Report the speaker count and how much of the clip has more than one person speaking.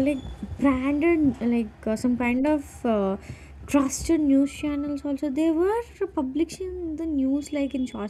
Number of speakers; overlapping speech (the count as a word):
one, no overlap